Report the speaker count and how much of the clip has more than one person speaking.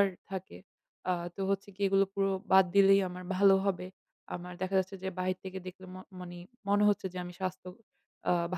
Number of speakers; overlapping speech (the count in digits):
1, no overlap